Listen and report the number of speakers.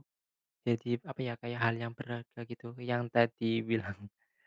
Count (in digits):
1